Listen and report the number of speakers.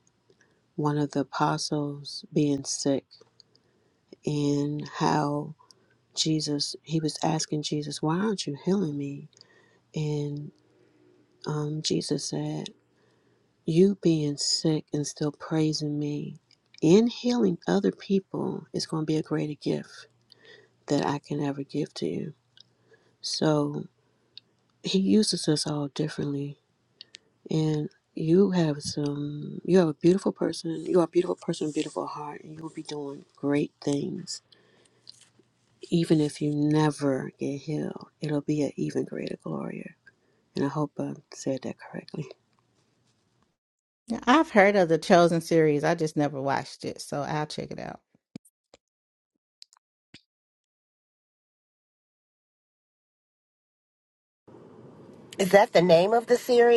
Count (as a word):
three